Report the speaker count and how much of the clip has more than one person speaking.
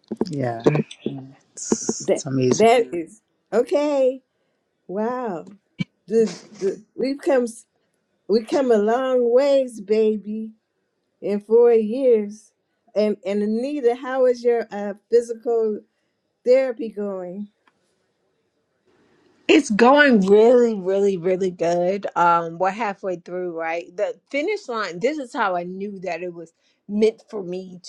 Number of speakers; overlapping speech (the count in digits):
3, about 1%